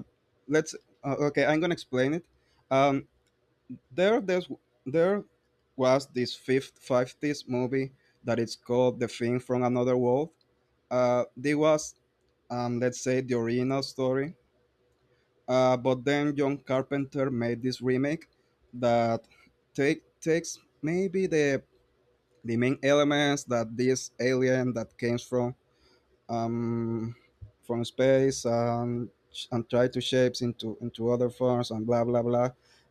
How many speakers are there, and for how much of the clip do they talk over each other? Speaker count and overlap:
1, no overlap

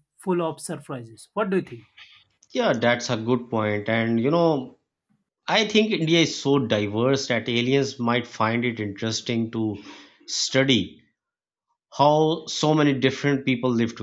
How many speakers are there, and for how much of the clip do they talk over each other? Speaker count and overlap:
2, no overlap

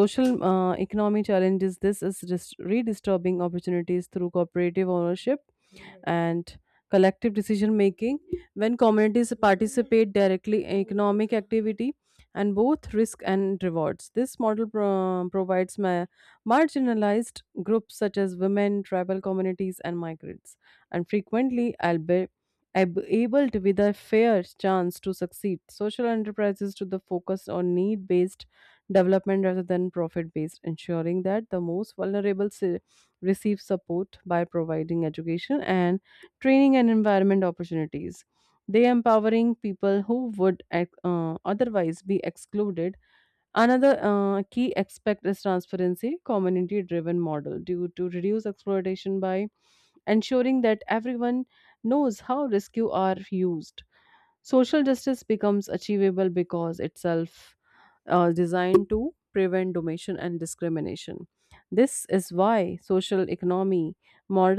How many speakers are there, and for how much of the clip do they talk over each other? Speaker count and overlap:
1, no overlap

